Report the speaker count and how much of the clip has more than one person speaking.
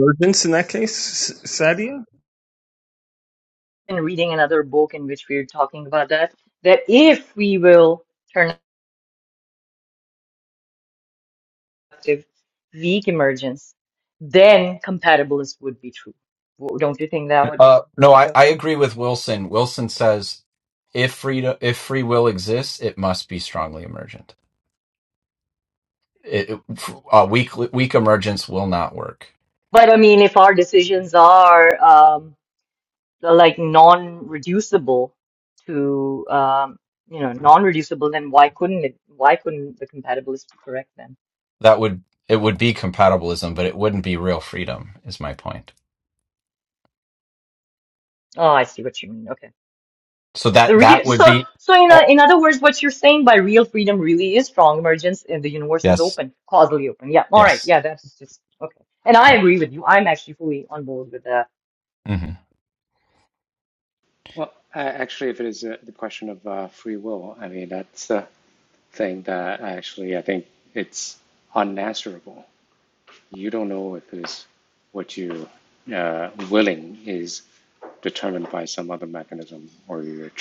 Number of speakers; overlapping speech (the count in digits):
4, about 2%